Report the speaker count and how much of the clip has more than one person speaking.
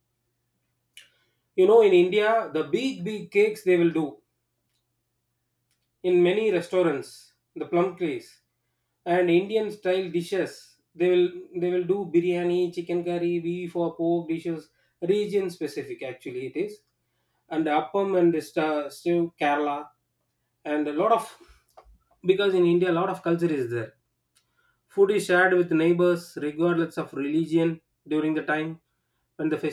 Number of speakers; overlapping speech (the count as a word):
one, no overlap